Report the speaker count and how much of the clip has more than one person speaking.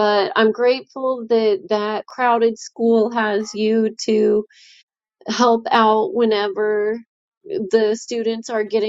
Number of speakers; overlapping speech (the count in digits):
1, no overlap